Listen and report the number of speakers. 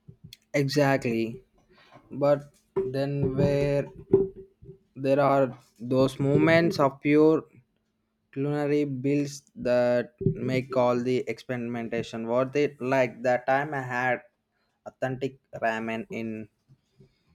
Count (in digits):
1